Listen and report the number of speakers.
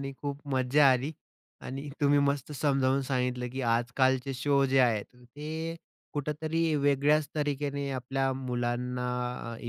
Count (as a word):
one